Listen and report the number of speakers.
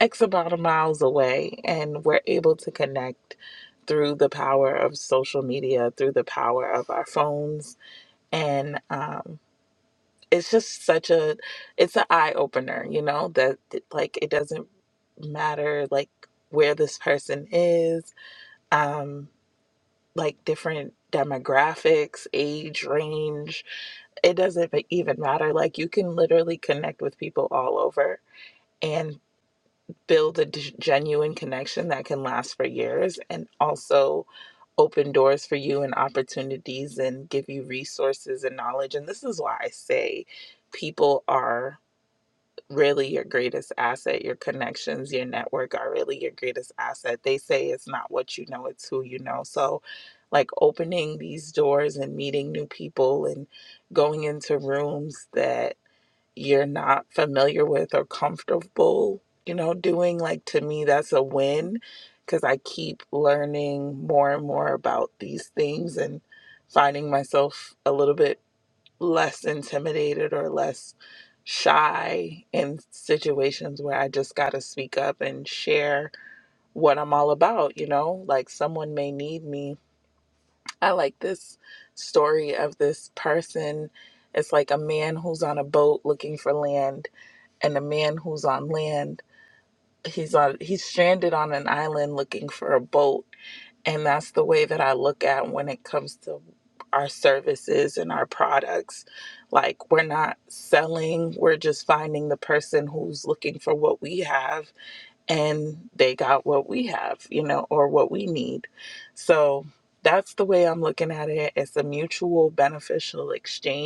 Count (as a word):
one